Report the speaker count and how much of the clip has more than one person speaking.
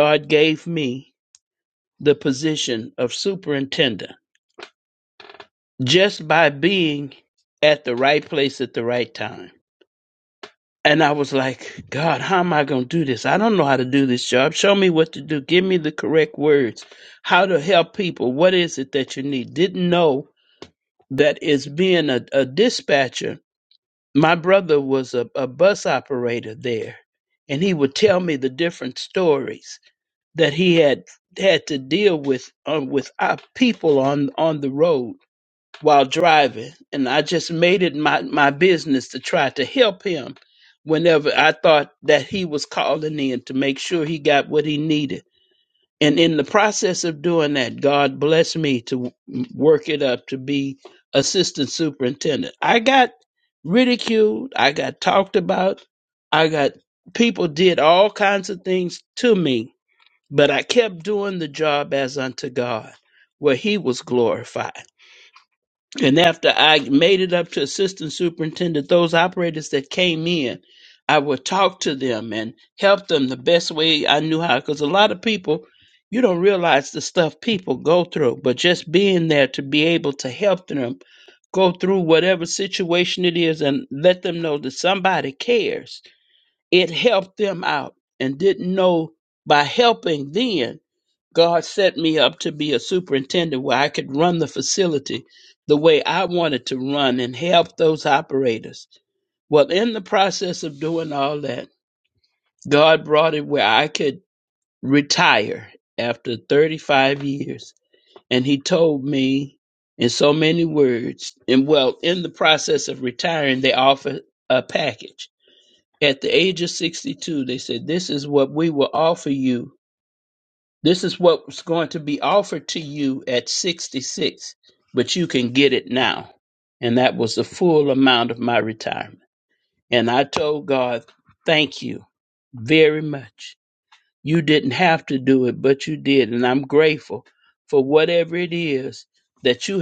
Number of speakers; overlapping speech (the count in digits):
1, no overlap